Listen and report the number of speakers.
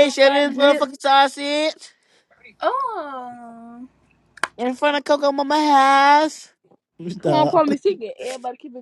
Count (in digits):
3